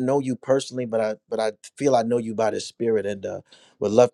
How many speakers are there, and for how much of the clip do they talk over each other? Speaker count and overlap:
one, no overlap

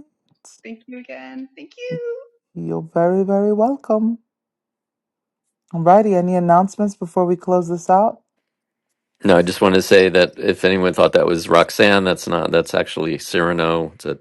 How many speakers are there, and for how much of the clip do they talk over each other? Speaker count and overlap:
three, no overlap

